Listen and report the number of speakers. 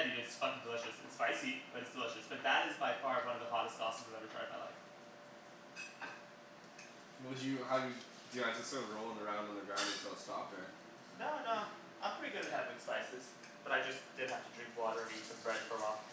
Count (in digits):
2